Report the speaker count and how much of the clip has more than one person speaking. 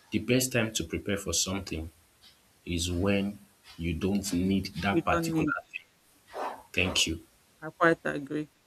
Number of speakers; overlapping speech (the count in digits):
2, about 7%